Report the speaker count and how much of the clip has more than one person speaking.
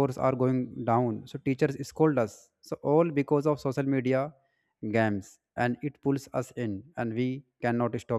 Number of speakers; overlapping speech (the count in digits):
1, no overlap